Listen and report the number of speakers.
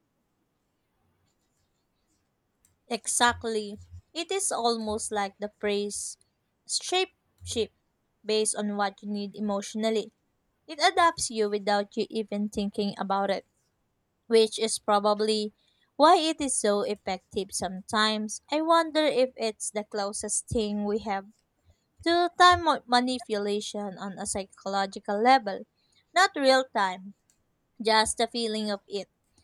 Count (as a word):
one